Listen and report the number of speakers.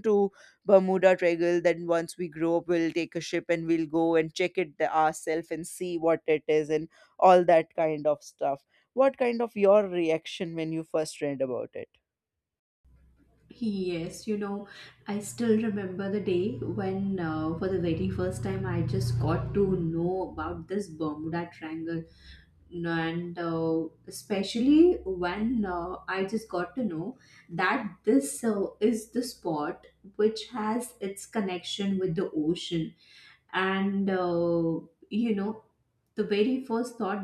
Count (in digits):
2